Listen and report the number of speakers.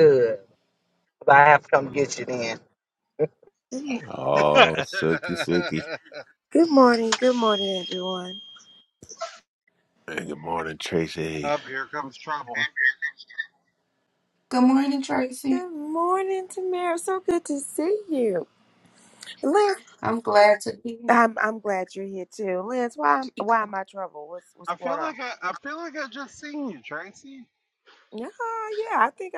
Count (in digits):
5